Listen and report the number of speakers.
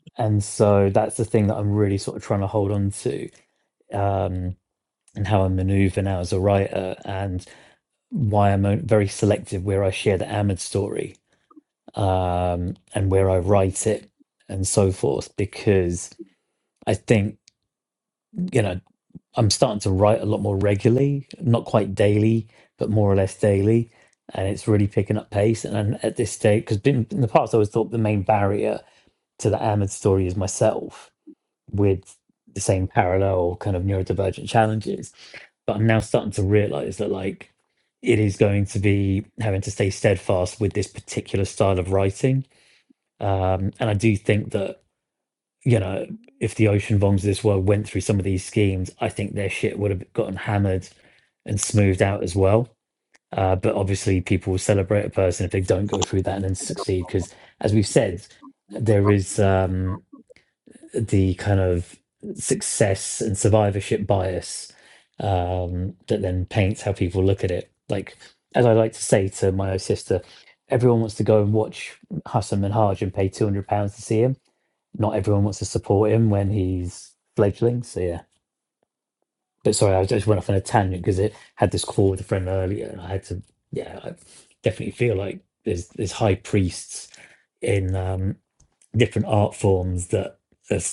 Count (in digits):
1